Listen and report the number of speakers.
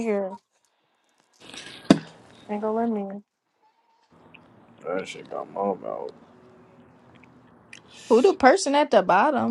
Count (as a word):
three